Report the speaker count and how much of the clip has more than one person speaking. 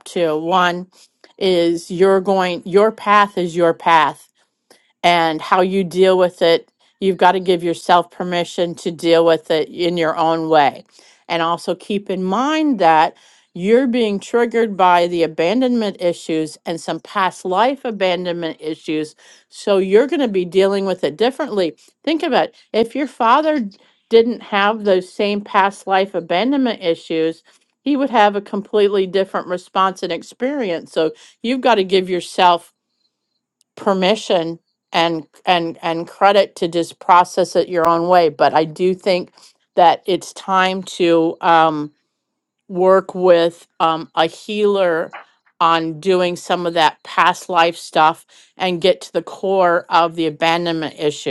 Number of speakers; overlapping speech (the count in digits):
1, no overlap